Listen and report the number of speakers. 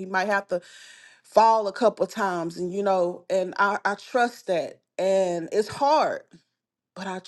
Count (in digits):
1